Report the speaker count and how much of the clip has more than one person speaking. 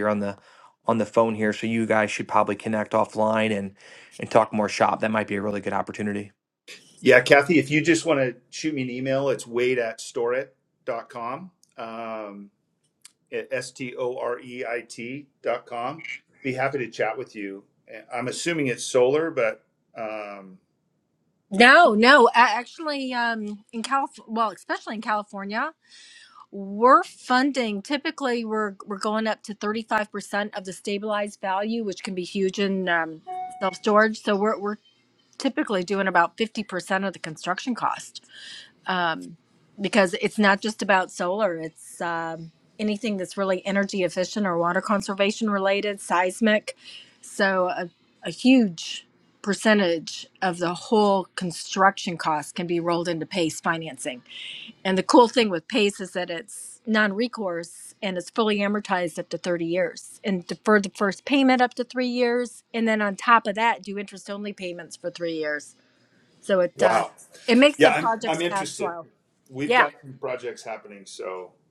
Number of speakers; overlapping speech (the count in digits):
3, about 2%